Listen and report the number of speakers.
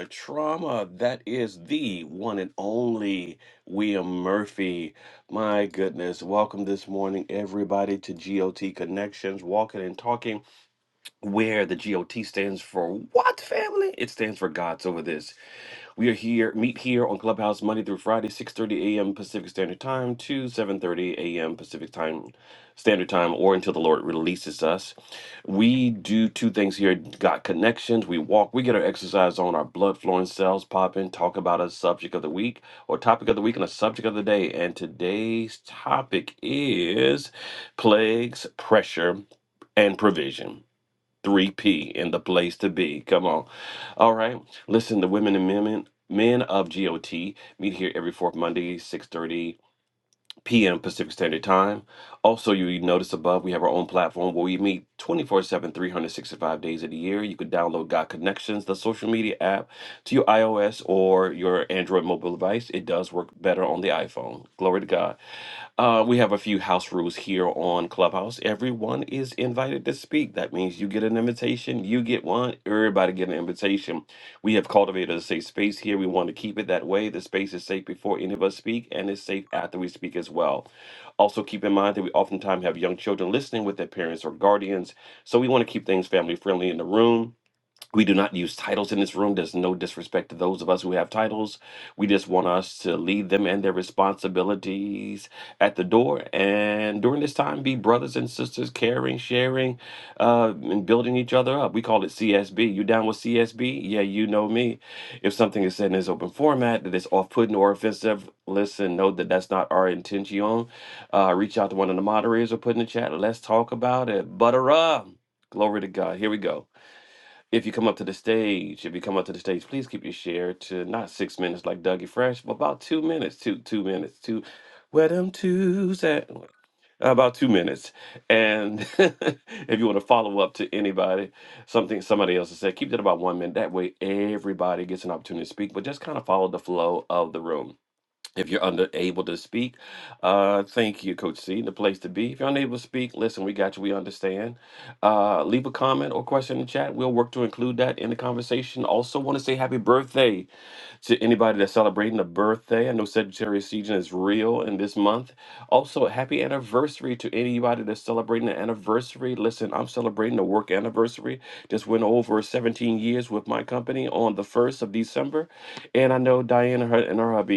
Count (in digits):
1